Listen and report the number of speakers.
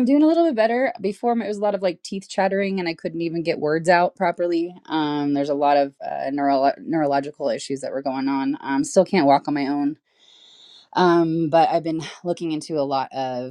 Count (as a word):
one